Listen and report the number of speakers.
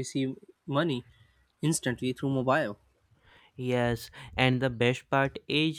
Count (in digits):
2